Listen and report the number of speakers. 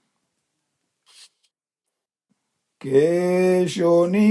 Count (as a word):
one